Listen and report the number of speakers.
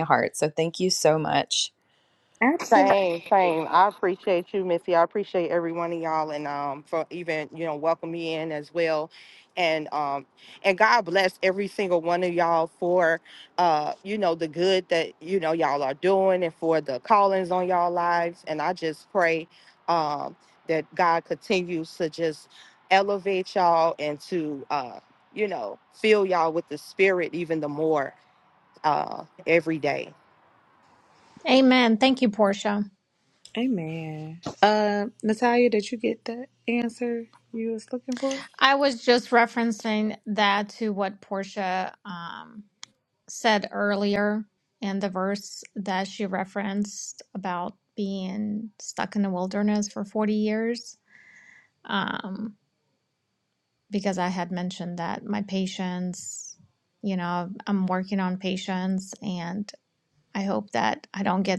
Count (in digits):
4